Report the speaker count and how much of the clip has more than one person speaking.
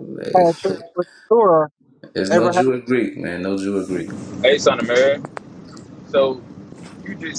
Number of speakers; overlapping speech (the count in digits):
3, about 10%